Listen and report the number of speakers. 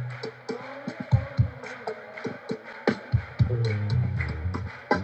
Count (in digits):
0